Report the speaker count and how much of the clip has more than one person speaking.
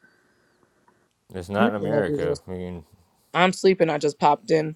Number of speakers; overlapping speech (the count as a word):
two, about 16%